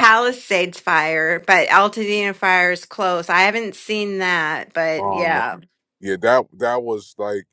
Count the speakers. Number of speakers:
2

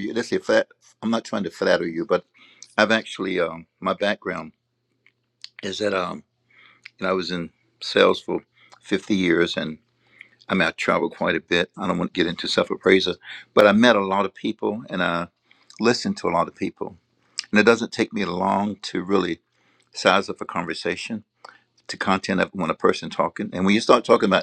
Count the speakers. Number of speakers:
1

